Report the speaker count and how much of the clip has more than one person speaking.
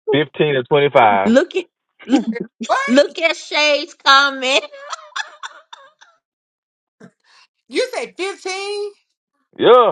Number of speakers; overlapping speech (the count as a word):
three, about 1%